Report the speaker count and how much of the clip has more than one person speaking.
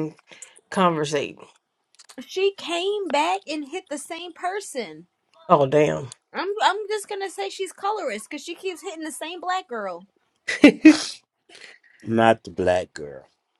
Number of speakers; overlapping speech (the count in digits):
3, no overlap